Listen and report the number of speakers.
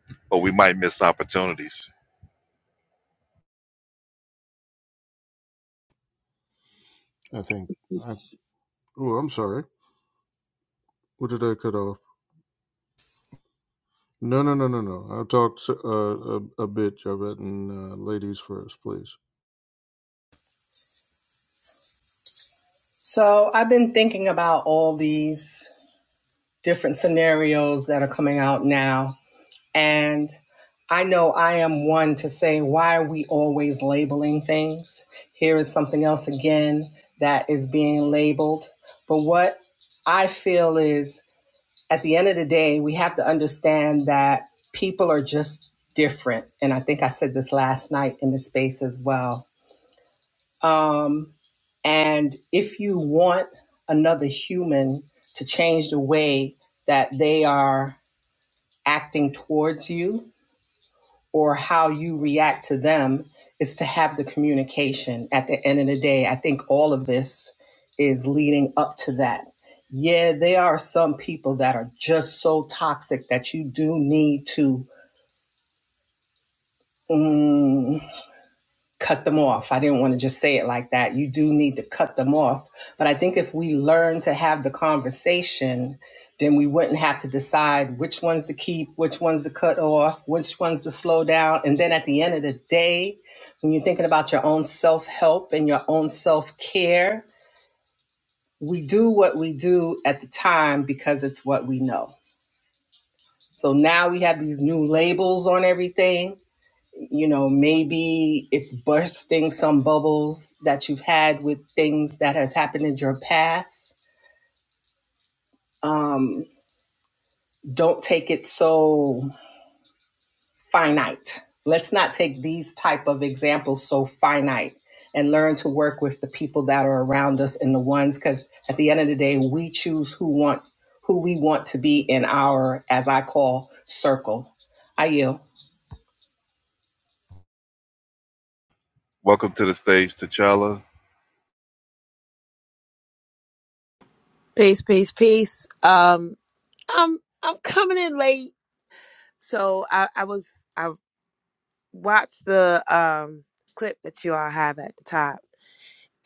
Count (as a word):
four